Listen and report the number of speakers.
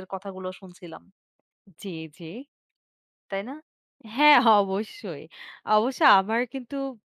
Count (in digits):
2